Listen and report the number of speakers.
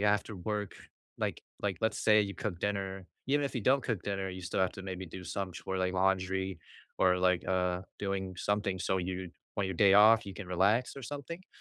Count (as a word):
one